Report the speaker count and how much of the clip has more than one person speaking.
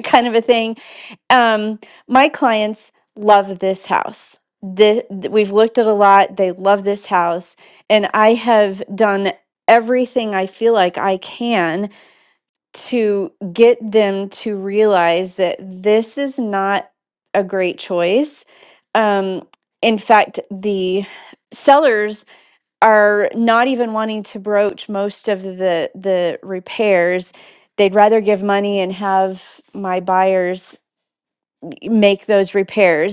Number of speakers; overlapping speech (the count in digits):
1, no overlap